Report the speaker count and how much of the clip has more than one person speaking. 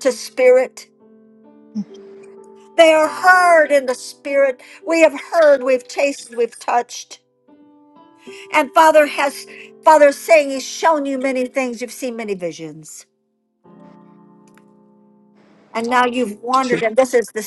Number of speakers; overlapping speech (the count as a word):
one, no overlap